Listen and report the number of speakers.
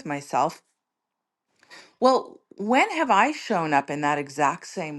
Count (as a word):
one